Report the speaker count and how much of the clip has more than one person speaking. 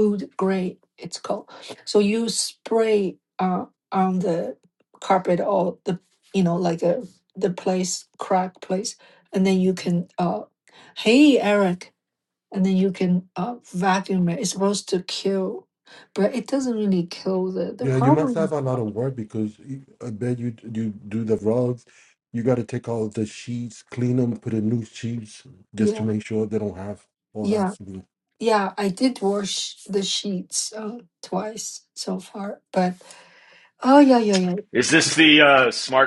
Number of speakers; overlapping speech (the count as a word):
three, about 4%